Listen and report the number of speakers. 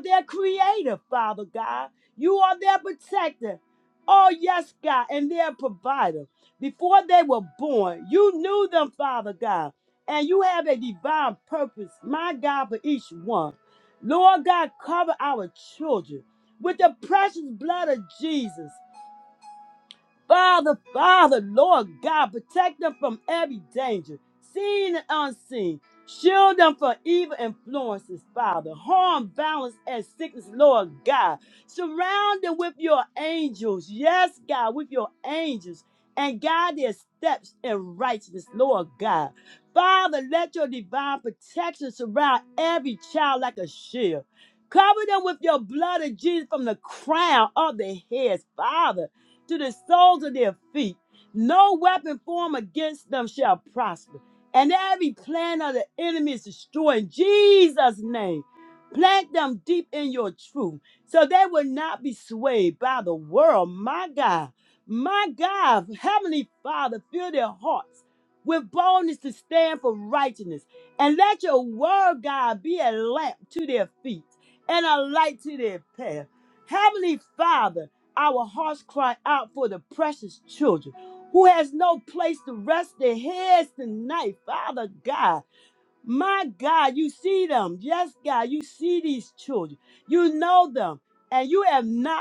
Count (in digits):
1